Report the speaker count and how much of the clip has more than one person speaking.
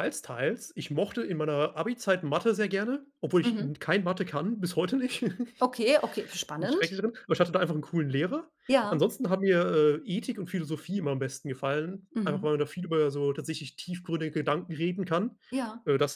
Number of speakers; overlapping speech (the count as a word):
two, about 7%